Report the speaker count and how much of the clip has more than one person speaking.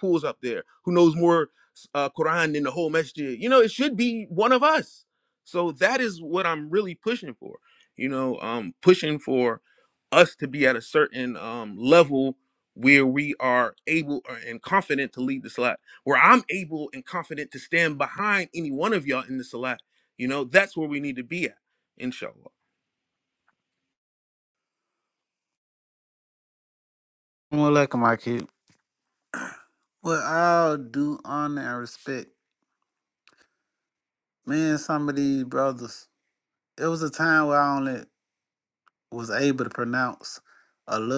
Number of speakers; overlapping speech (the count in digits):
2, no overlap